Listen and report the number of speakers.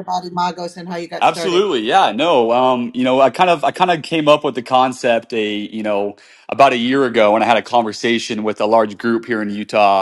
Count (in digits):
2